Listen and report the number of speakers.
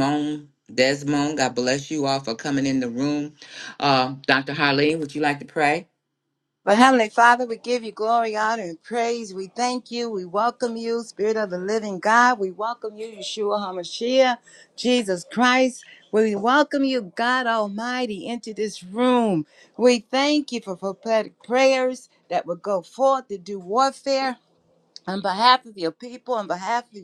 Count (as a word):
two